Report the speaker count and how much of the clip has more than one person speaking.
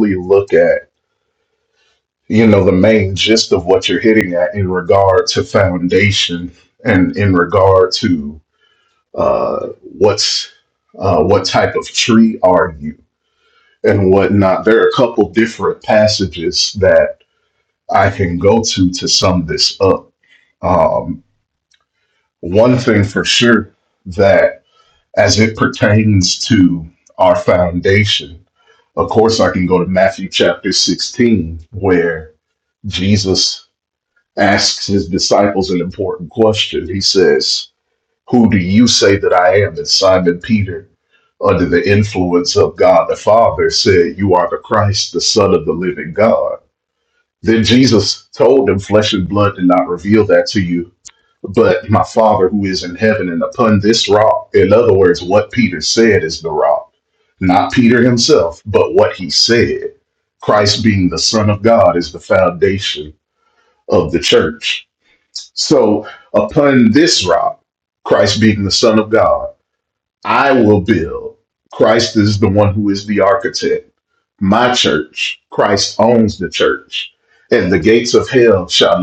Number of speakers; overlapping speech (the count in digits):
1, no overlap